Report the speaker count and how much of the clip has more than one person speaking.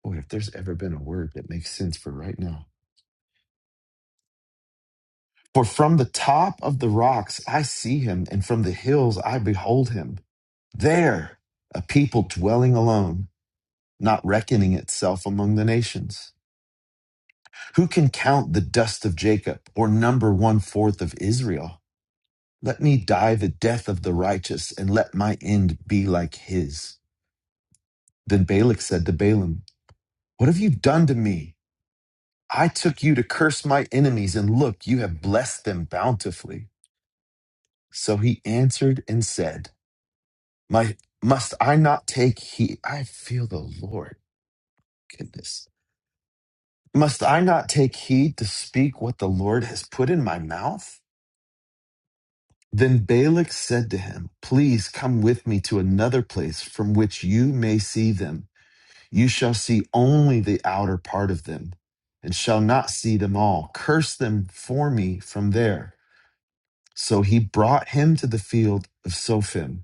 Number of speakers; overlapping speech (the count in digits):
1, no overlap